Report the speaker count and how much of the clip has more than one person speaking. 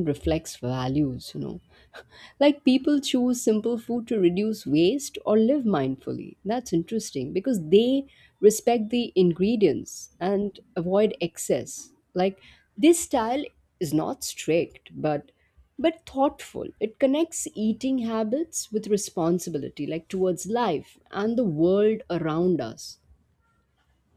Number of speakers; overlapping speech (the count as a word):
one, no overlap